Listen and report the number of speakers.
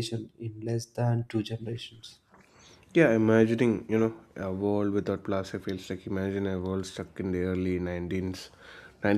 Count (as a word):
two